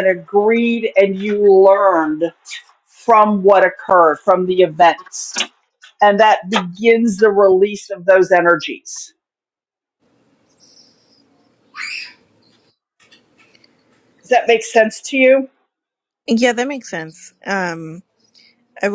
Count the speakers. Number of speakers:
2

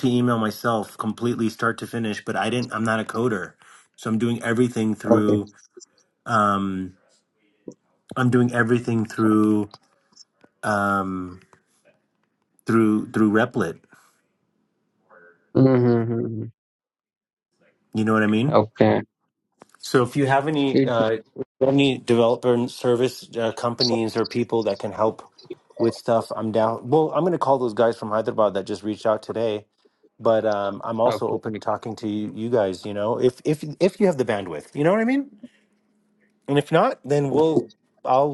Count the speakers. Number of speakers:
2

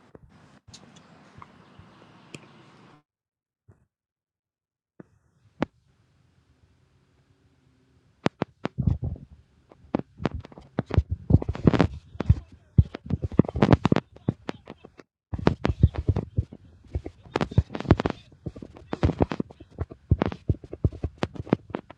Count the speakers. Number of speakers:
0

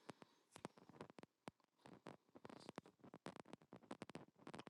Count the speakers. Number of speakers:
0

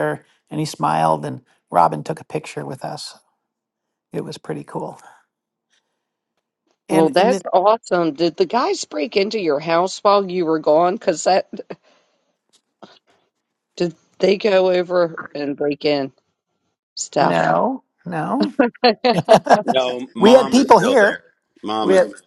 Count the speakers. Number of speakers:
3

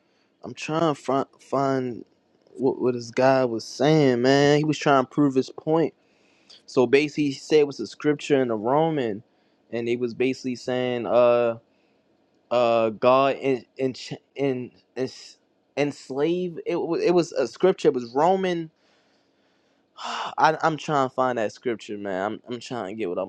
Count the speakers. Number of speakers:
1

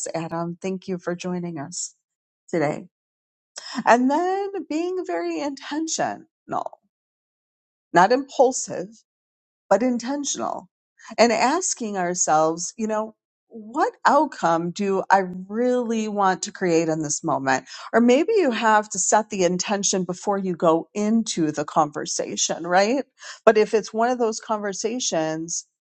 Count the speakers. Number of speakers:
1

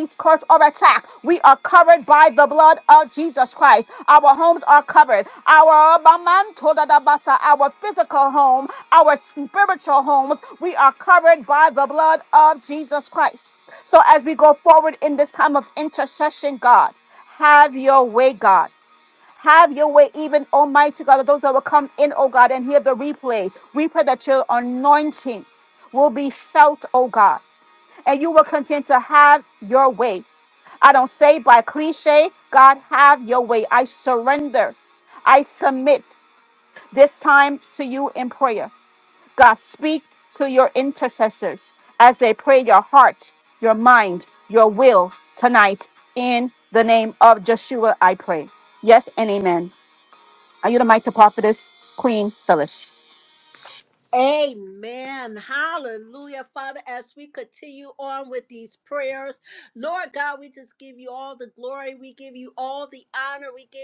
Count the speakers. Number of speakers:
2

